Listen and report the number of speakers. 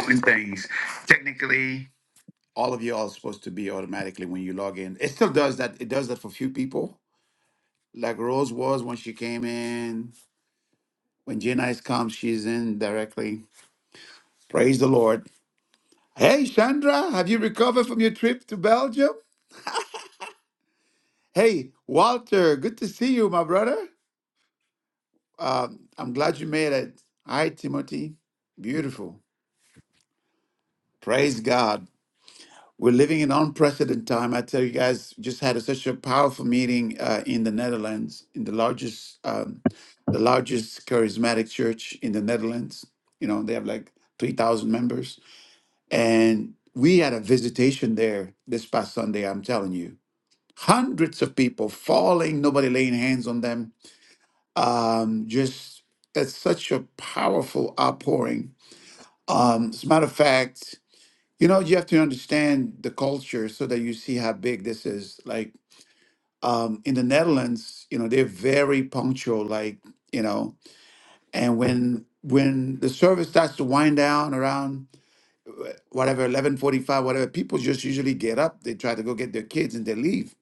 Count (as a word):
one